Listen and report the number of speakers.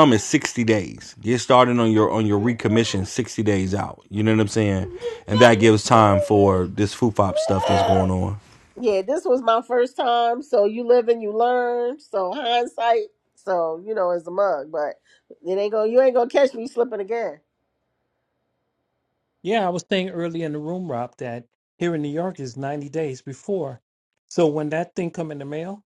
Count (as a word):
three